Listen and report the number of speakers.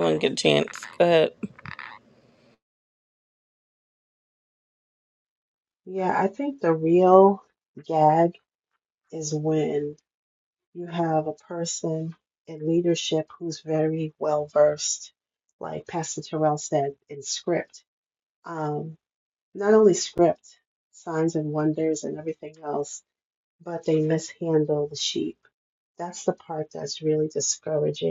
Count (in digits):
2